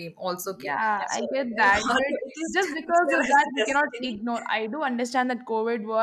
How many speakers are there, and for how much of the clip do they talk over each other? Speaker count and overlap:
two, about 59%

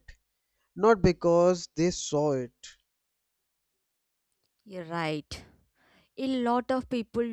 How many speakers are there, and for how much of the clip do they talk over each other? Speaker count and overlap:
two, no overlap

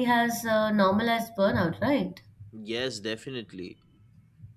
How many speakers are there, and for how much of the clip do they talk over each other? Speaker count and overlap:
two, no overlap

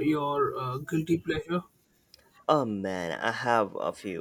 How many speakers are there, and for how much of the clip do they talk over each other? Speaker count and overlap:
two, no overlap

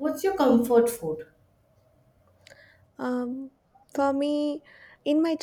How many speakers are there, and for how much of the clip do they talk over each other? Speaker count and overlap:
two, no overlap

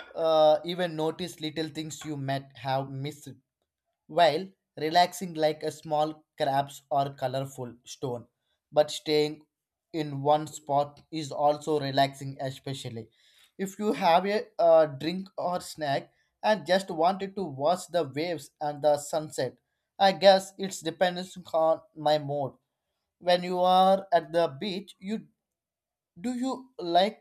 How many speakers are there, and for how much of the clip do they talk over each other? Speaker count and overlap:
one, no overlap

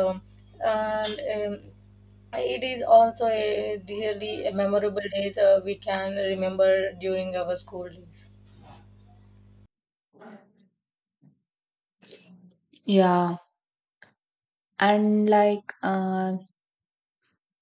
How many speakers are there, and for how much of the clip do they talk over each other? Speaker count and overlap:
two, no overlap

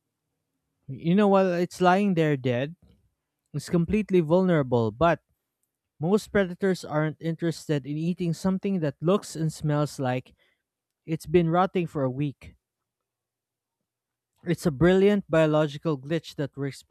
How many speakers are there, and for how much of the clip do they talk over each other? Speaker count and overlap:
one, no overlap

